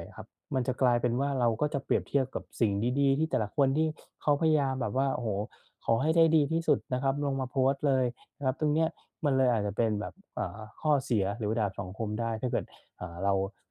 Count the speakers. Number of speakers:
one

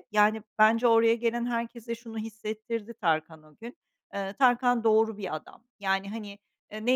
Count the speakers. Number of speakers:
one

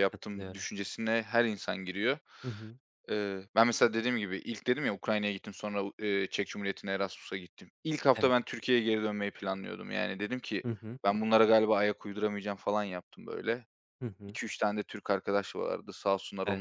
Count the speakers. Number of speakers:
two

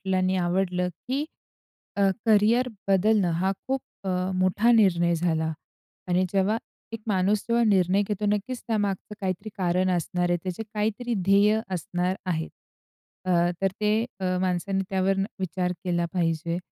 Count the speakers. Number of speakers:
one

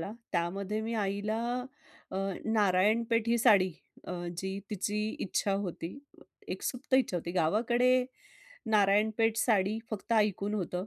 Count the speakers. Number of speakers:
one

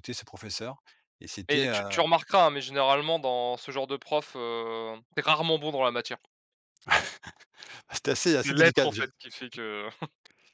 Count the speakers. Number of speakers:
two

